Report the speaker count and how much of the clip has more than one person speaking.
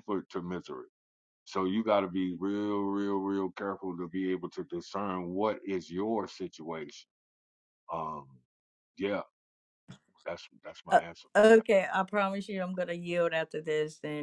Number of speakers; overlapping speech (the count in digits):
2, about 1%